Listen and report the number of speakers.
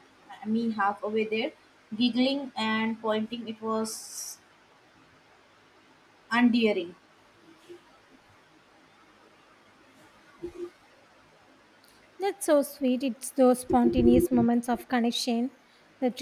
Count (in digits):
2